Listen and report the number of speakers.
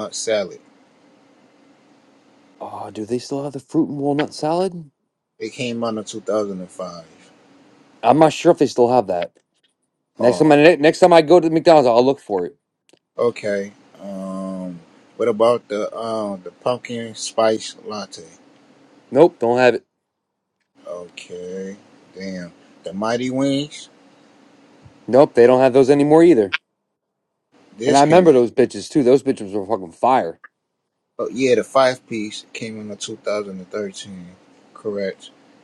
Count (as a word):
two